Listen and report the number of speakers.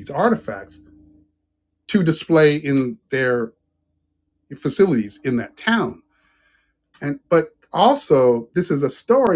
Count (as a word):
one